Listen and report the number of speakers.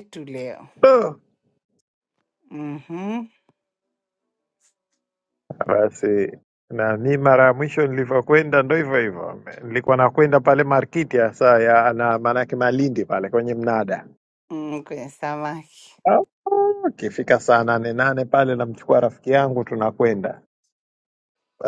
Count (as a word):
two